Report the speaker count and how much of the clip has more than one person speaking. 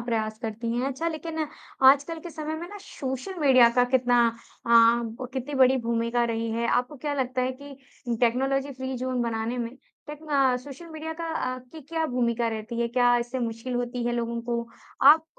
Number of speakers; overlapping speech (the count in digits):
1, no overlap